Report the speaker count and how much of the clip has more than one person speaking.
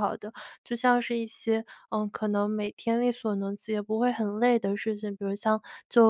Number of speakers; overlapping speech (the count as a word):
one, no overlap